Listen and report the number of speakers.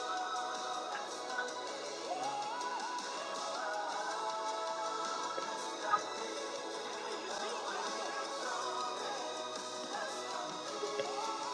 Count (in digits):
0